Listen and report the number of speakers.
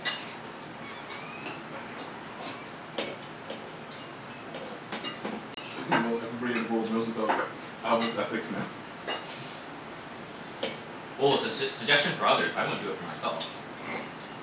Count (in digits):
2